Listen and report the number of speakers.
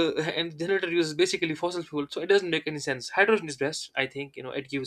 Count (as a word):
one